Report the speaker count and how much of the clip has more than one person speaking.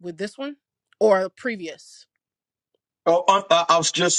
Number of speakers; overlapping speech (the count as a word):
two, no overlap